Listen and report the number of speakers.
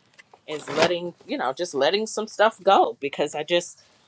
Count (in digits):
1